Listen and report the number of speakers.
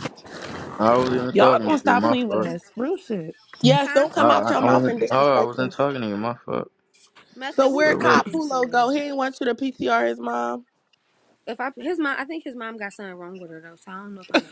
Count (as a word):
four